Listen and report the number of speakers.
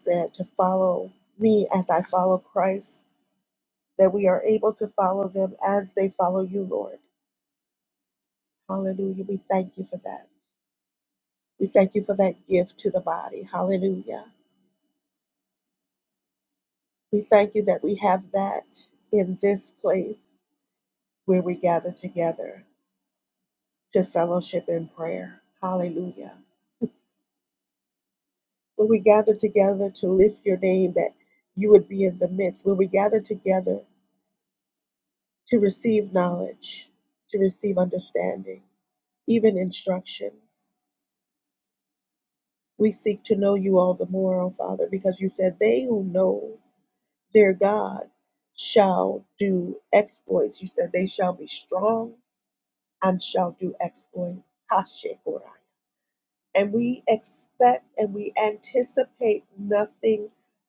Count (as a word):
one